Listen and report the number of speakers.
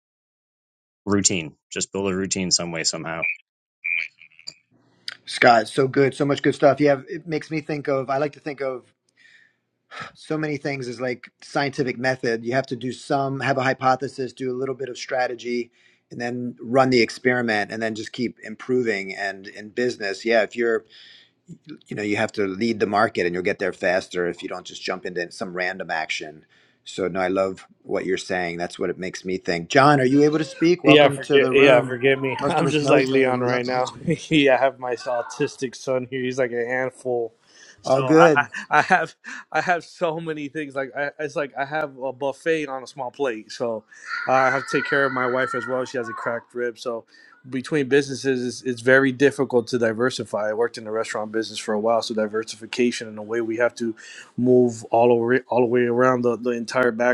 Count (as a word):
three